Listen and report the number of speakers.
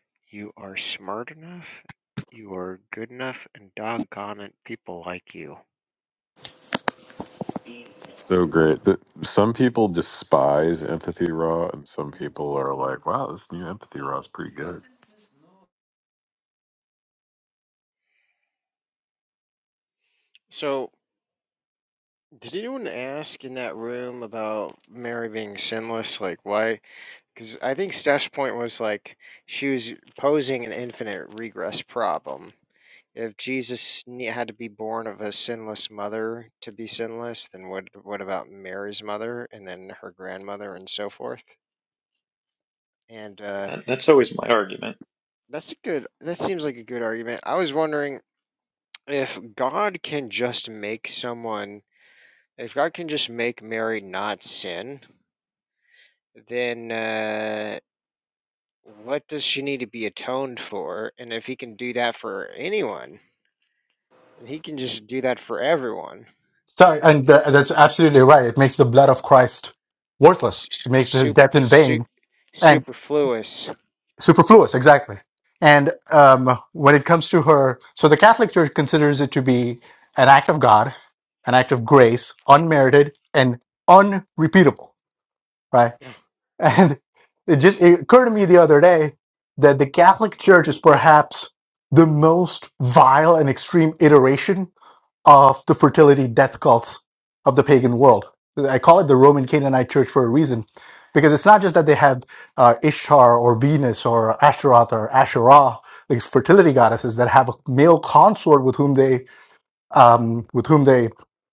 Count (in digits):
4